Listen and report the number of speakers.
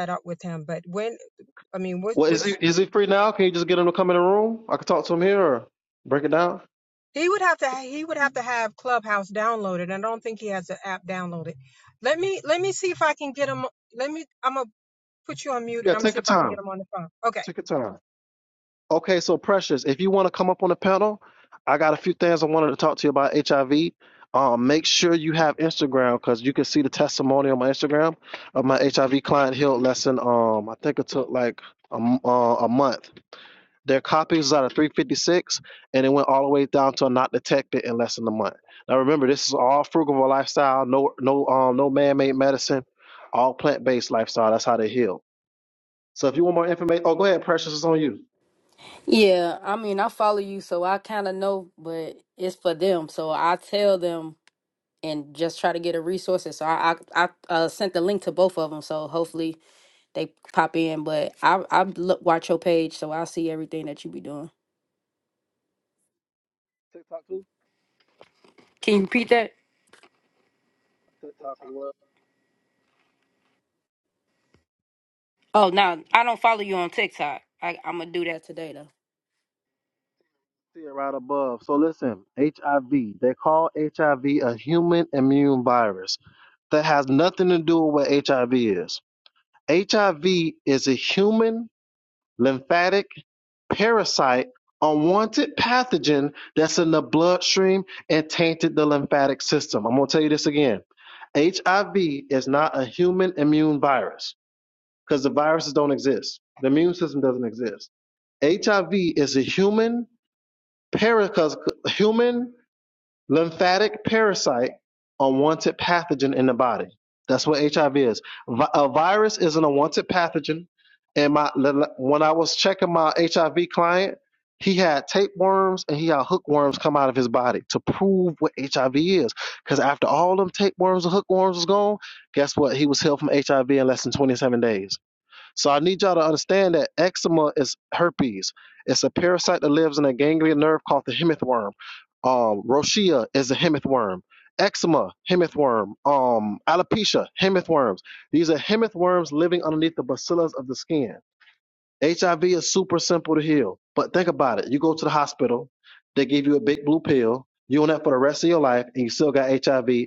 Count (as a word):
three